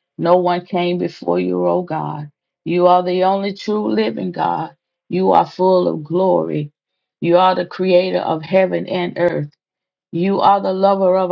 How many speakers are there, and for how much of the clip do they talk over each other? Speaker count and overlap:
one, no overlap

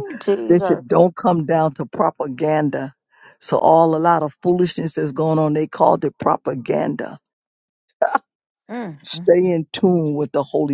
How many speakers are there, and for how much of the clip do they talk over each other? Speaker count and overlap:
two, about 3%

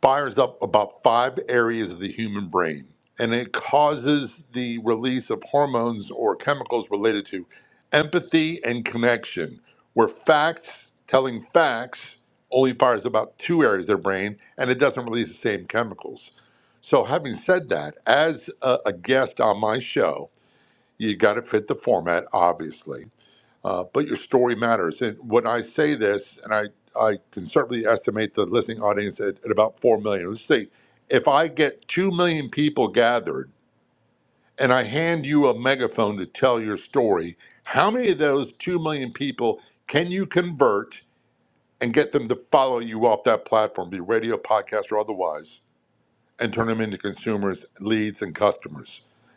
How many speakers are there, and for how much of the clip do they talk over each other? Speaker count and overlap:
one, no overlap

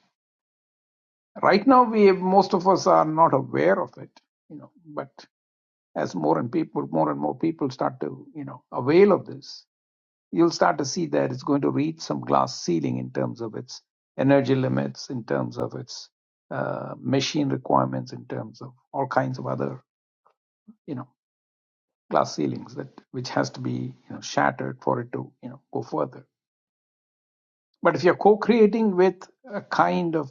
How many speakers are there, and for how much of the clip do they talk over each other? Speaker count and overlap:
one, no overlap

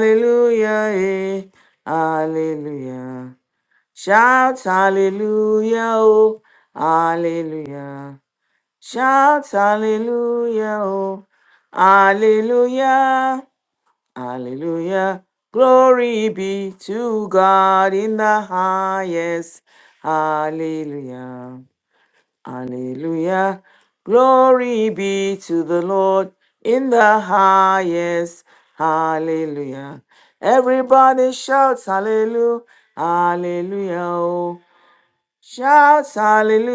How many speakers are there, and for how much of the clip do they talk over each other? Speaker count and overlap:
one, no overlap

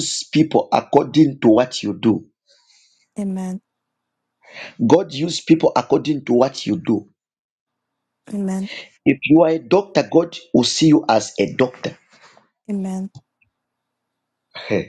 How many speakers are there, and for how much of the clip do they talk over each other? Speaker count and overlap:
two, no overlap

